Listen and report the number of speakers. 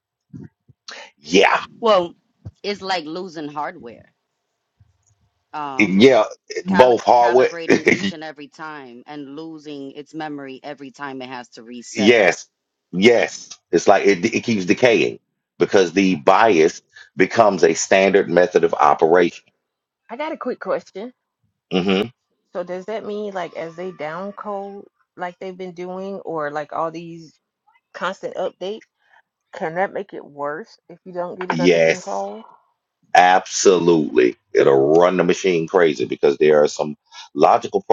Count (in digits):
3